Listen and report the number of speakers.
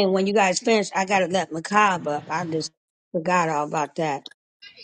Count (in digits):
1